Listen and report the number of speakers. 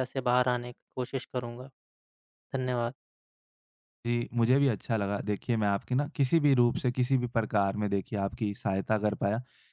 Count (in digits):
2